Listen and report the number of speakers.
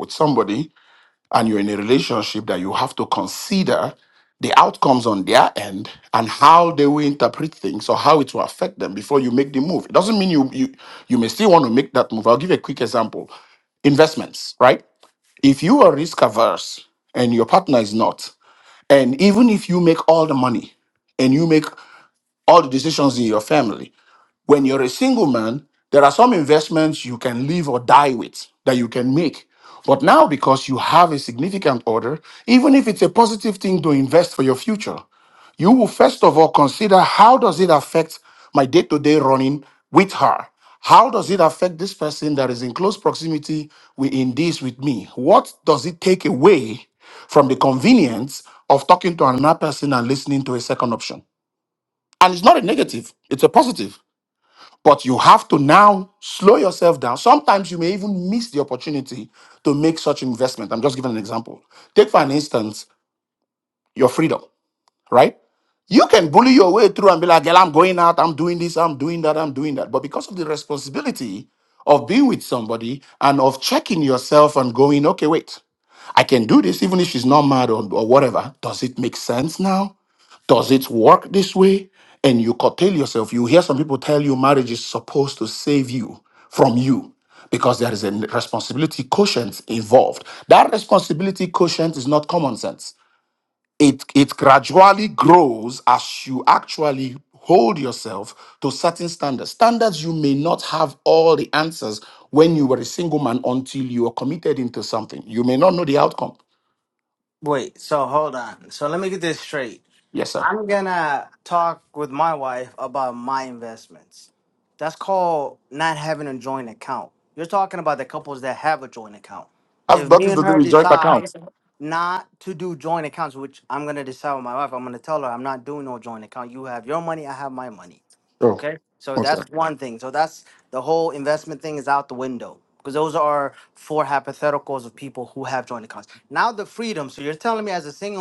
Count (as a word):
two